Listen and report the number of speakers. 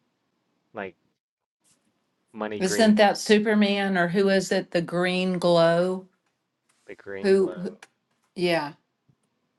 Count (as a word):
two